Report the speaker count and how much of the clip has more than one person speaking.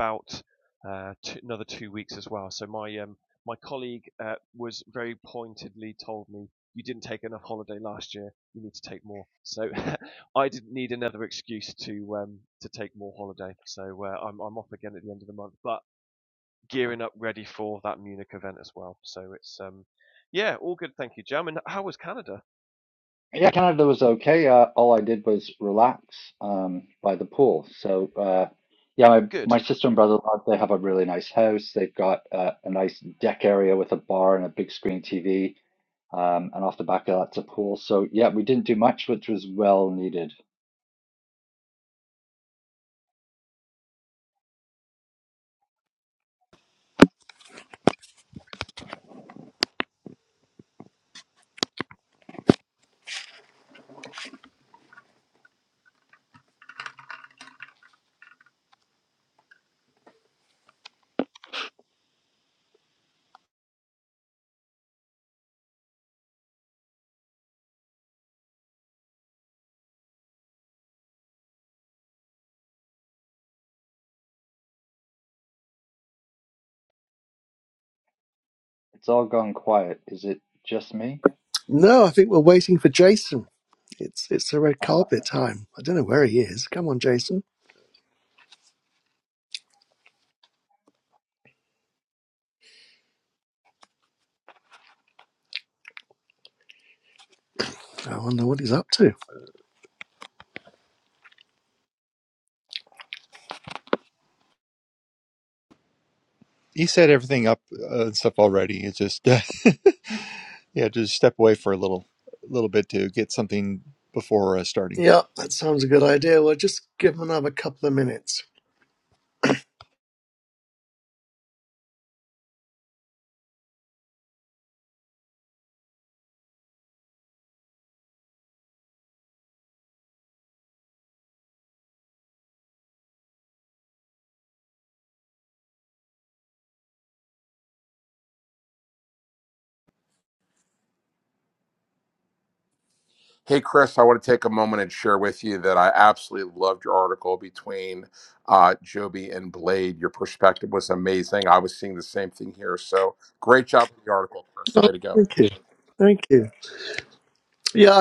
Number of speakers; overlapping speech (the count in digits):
5, about 1%